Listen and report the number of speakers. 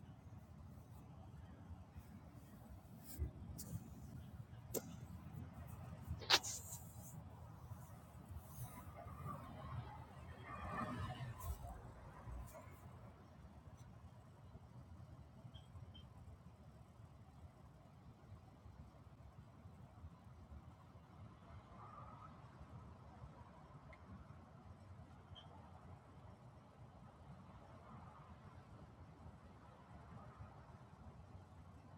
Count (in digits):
0